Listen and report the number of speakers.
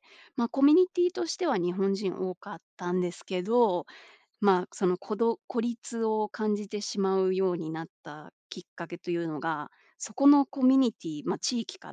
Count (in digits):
1